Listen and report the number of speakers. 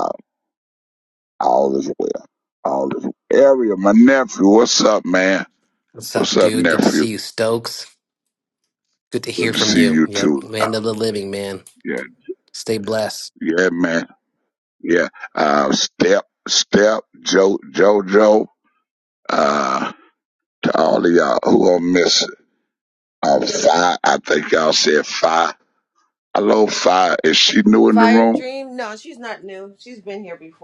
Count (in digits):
3